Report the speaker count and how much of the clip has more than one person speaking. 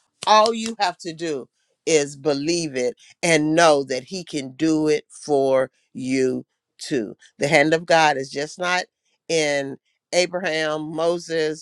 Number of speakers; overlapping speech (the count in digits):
1, no overlap